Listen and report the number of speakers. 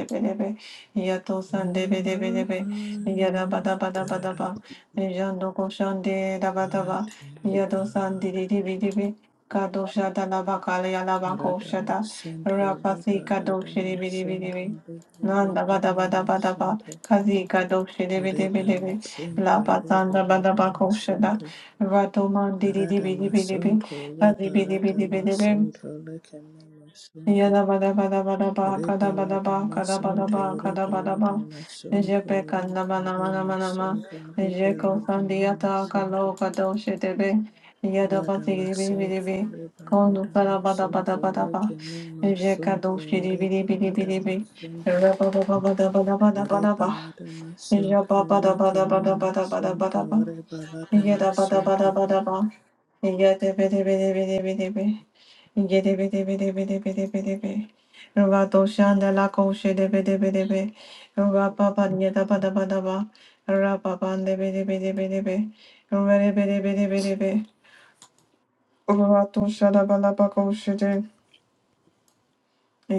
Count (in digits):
2